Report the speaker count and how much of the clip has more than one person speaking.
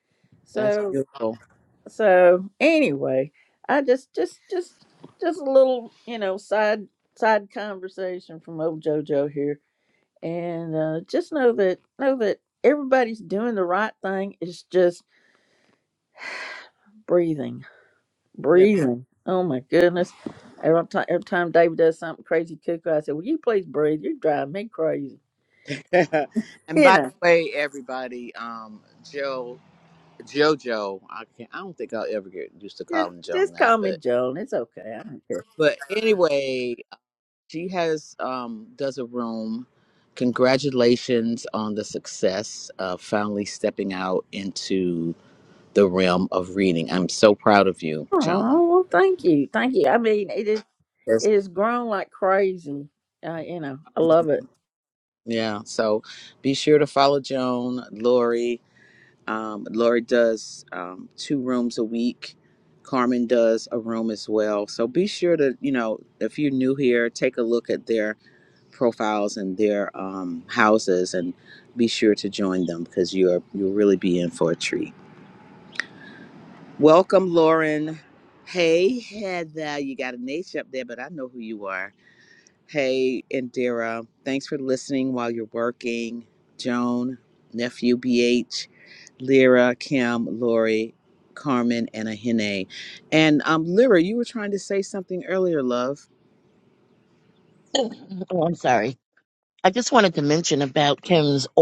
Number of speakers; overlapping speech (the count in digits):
3, about 2%